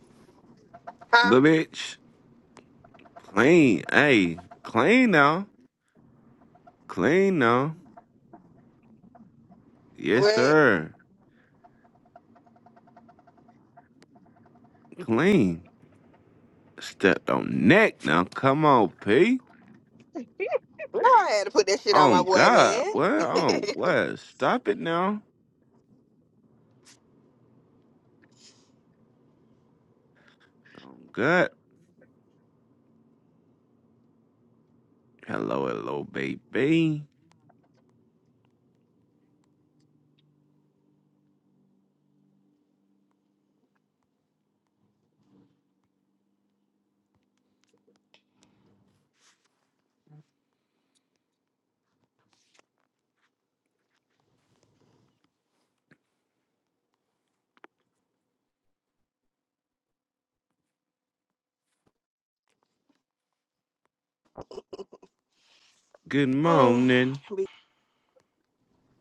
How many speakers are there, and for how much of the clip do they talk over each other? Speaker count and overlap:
two, about 3%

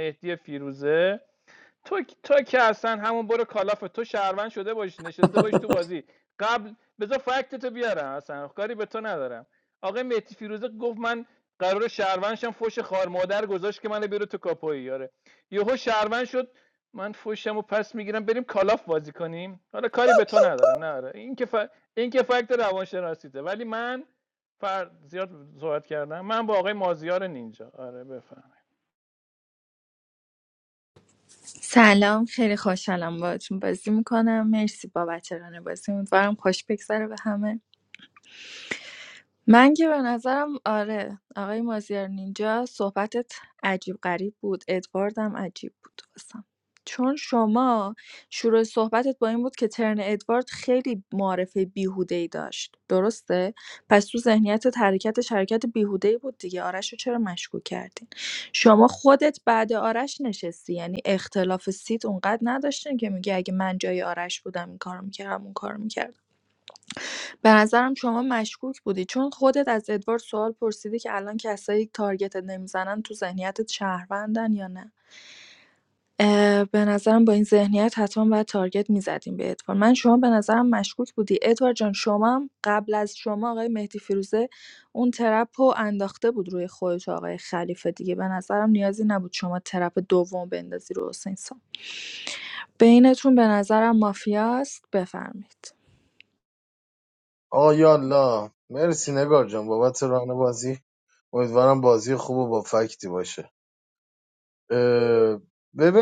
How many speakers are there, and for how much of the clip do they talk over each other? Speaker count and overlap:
three, no overlap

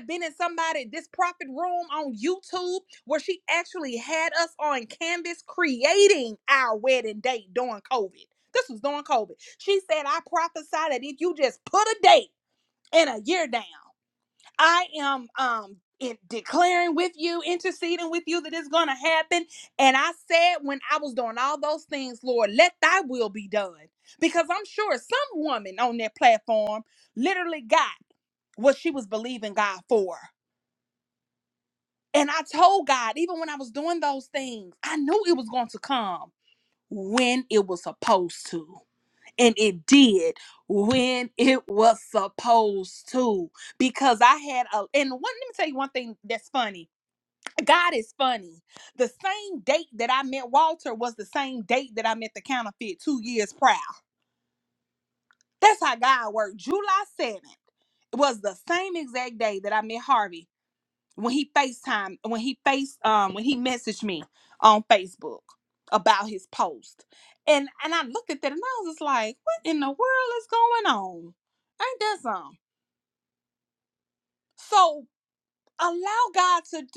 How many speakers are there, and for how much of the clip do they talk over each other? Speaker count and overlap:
one, no overlap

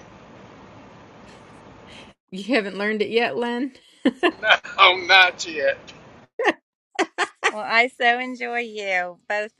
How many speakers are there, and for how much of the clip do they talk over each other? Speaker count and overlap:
three, no overlap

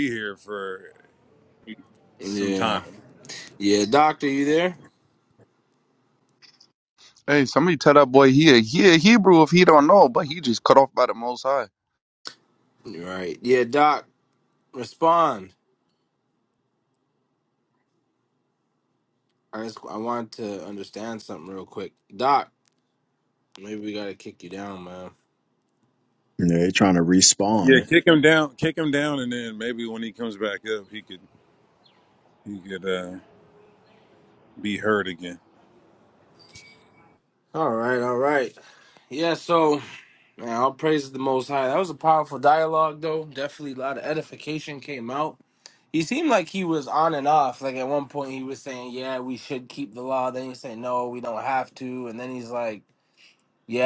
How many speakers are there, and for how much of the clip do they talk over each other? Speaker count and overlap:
four, about 2%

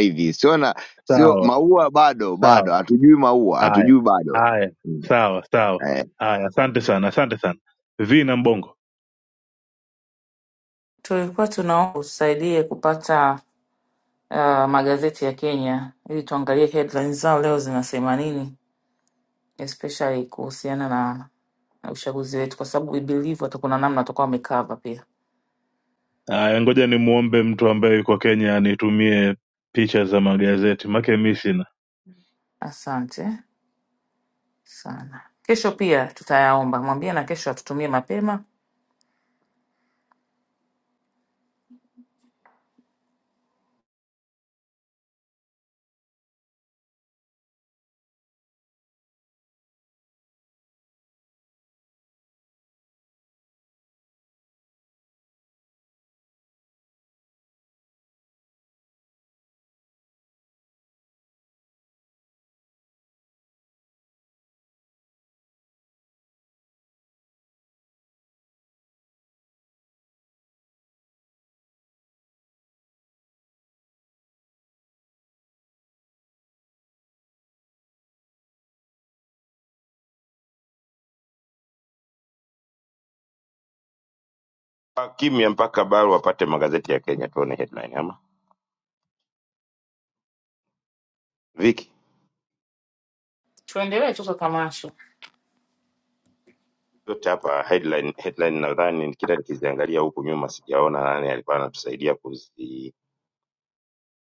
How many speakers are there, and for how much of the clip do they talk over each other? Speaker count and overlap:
four, about 1%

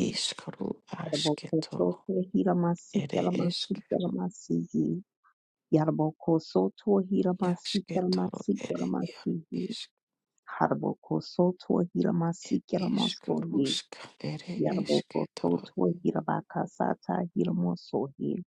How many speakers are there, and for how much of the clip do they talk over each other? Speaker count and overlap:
two, about 34%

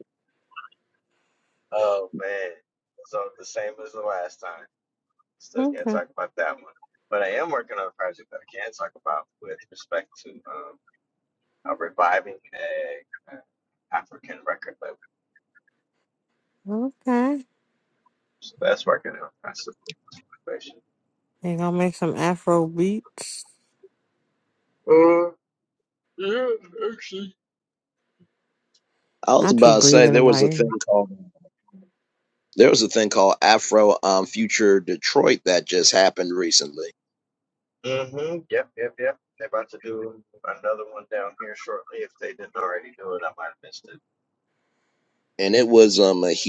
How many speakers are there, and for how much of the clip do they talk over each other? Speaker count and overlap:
three, about 4%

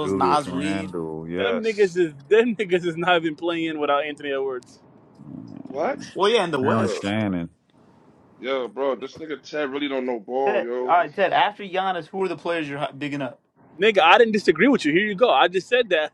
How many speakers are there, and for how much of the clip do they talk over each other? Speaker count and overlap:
four, about 14%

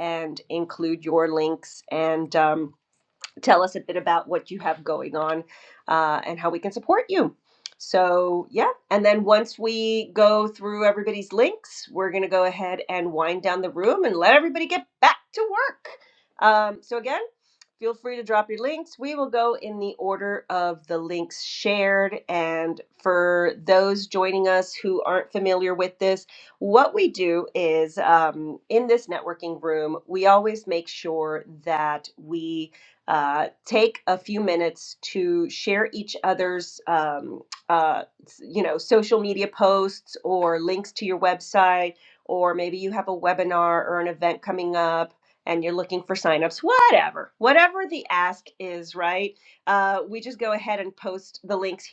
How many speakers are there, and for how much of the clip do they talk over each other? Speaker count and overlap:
one, no overlap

